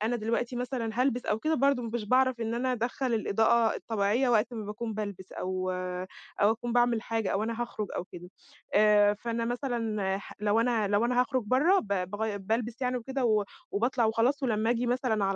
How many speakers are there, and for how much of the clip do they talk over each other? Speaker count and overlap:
one, no overlap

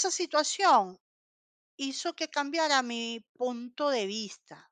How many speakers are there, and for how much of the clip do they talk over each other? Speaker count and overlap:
one, no overlap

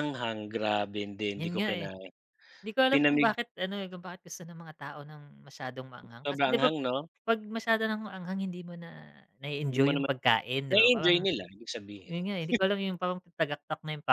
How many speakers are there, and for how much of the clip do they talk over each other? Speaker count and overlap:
two, about 16%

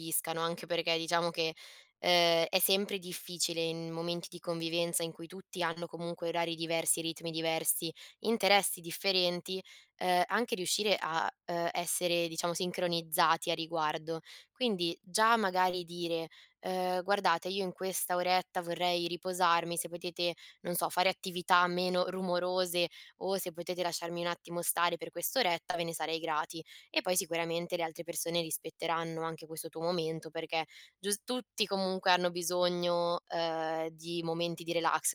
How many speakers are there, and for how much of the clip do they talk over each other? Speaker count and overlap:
one, no overlap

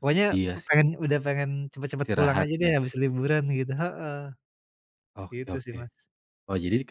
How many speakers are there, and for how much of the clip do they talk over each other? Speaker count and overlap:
two, about 26%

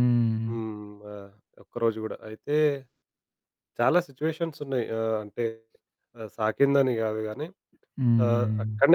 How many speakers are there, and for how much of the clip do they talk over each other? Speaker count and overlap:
two, about 6%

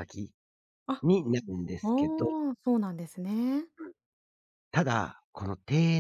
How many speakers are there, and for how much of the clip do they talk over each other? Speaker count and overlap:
two, about 8%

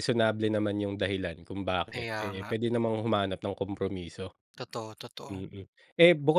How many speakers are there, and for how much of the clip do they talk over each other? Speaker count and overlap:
two, about 12%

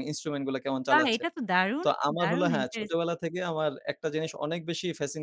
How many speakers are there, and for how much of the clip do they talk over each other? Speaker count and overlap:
two, about 27%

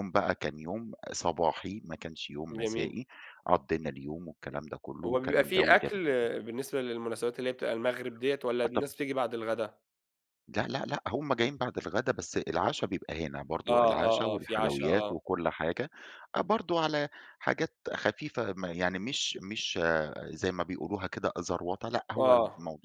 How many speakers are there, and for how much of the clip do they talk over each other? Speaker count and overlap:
two, about 15%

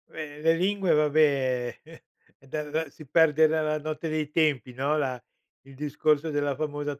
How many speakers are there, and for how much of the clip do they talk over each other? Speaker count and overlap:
one, no overlap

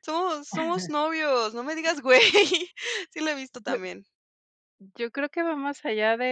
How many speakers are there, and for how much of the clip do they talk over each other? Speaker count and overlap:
two, no overlap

